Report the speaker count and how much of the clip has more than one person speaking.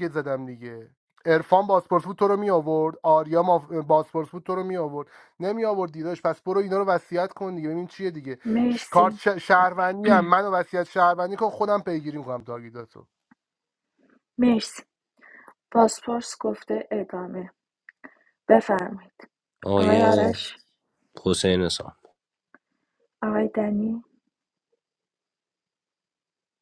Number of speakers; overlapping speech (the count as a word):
three, about 4%